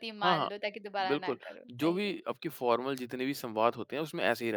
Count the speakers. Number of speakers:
2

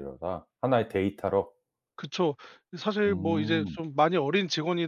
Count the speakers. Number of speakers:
2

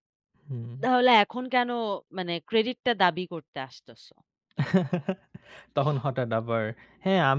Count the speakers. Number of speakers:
2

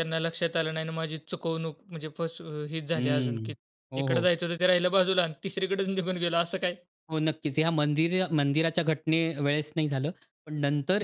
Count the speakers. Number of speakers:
2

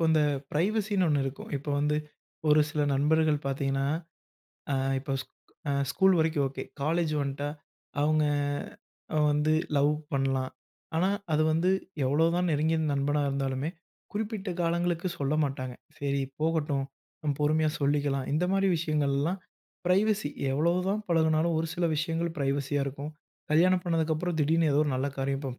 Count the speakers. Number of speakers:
1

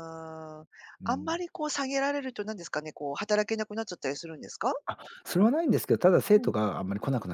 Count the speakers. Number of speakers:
2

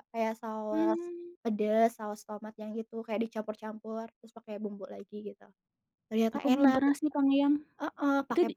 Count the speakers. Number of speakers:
2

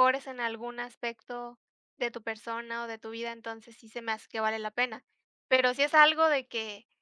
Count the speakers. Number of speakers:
1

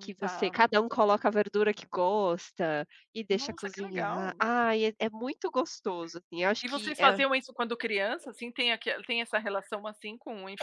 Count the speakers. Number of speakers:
2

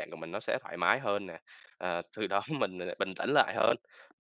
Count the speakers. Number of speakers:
1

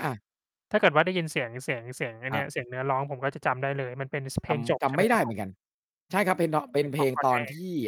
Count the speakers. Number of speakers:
2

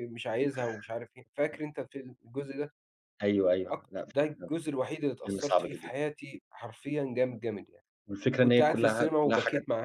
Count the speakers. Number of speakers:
2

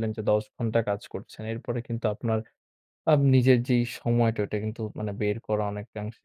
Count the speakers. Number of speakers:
1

